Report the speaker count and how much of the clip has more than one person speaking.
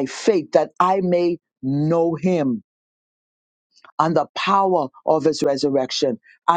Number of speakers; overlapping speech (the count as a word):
one, no overlap